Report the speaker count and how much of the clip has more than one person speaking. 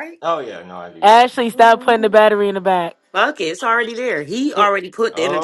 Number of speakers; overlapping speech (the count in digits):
3, about 12%